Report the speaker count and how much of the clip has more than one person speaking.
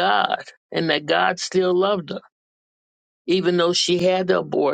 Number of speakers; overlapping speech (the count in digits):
1, no overlap